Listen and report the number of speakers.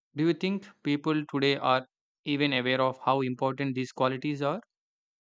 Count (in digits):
1